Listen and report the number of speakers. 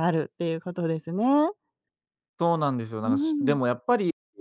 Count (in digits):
2